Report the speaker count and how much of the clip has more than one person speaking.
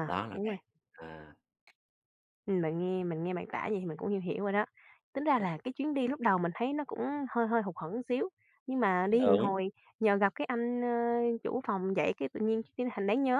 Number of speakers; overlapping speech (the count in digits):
2, about 5%